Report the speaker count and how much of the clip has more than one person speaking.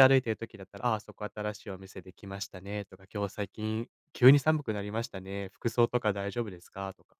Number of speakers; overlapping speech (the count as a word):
one, no overlap